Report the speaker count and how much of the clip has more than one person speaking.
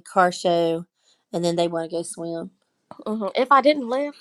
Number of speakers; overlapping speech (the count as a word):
two, no overlap